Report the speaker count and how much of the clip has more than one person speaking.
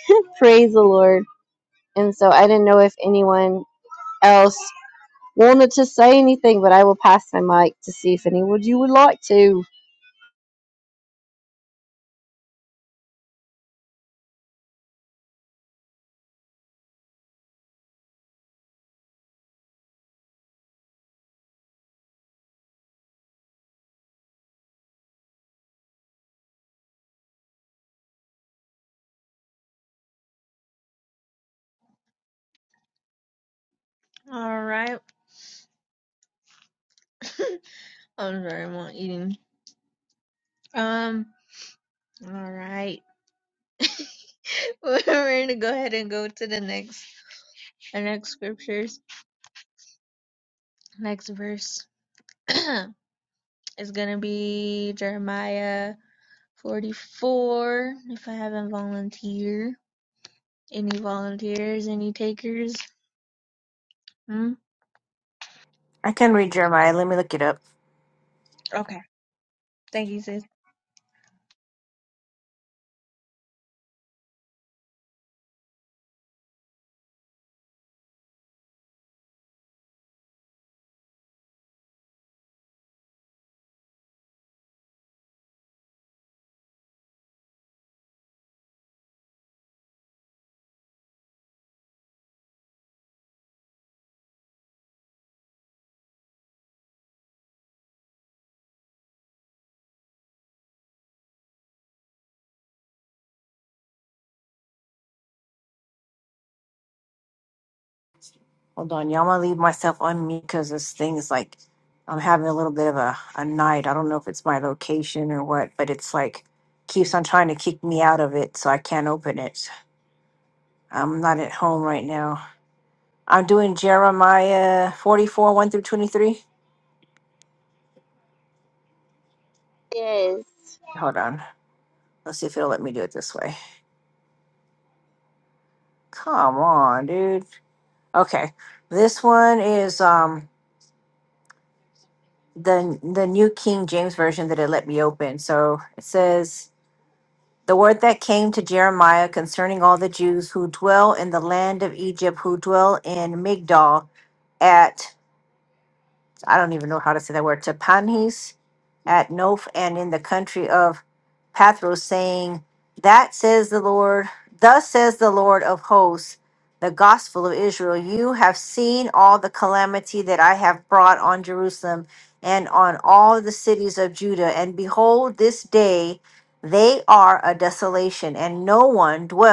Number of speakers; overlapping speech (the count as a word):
three, no overlap